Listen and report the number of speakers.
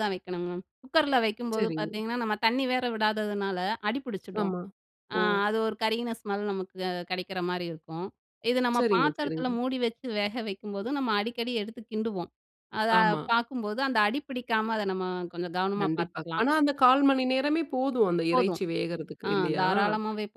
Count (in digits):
2